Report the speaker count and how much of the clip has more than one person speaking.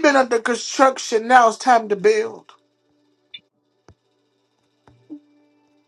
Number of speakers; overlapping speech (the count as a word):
one, no overlap